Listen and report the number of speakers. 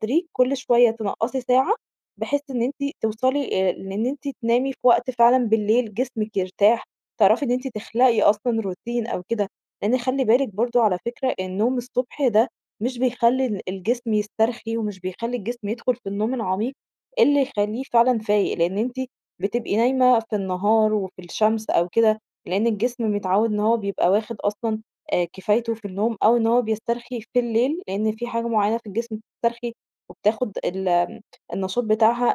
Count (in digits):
1